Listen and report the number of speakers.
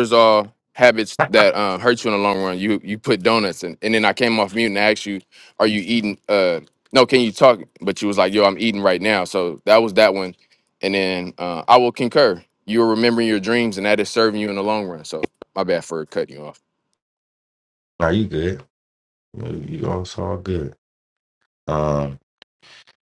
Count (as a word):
two